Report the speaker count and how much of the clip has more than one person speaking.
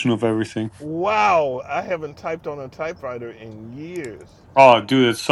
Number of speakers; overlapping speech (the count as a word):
two, no overlap